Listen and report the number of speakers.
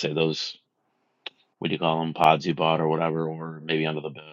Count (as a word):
one